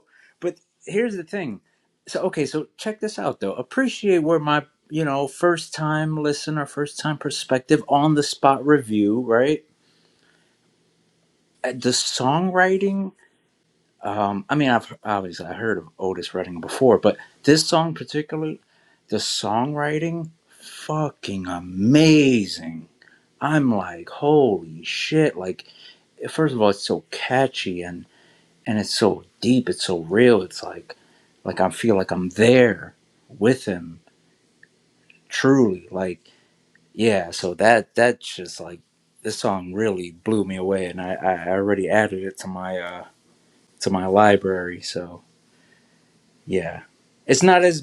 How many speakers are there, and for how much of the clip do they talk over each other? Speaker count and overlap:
1, no overlap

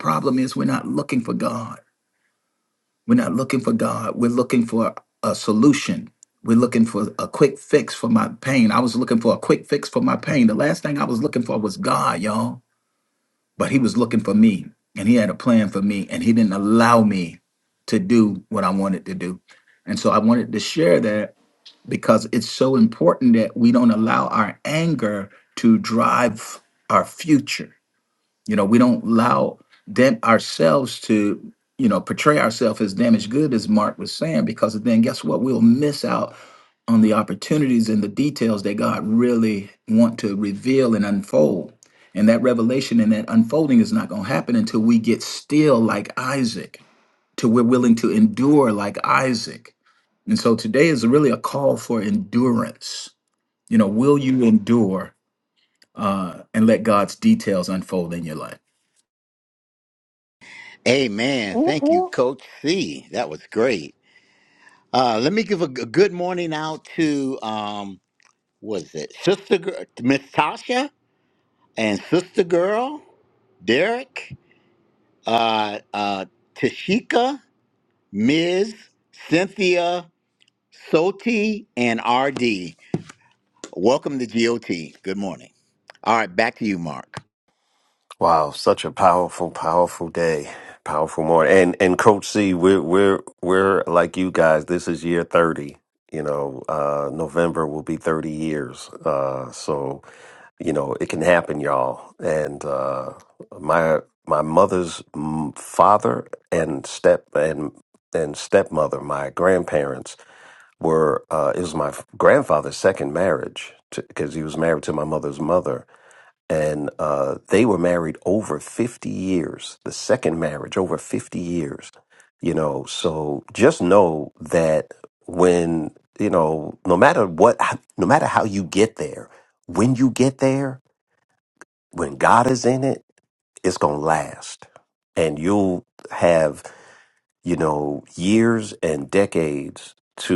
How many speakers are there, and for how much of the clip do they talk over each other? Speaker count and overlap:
3, no overlap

